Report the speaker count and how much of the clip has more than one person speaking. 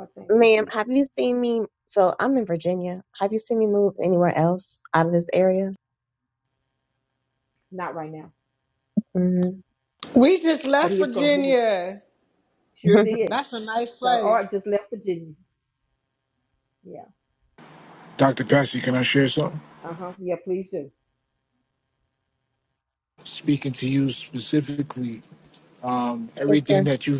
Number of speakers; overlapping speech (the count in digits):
4, about 7%